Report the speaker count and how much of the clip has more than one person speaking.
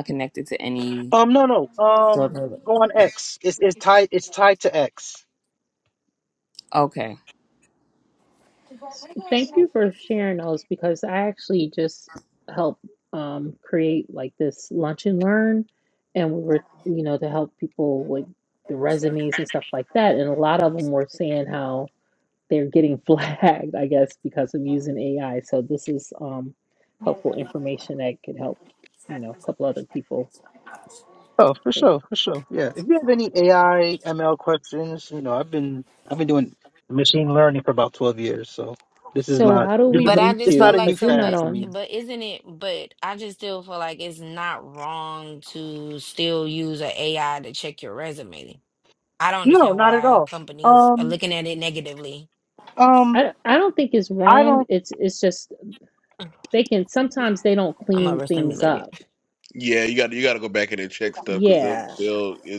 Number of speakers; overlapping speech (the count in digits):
5, about 9%